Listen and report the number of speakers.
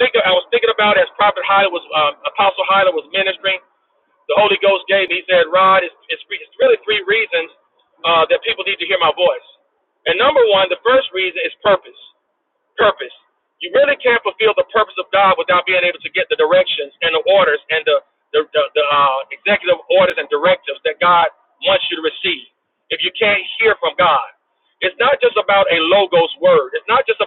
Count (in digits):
1